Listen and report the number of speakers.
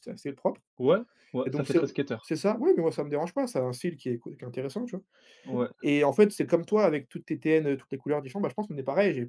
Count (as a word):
two